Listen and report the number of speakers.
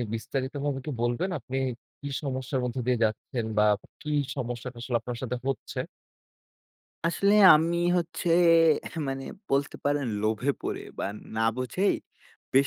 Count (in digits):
2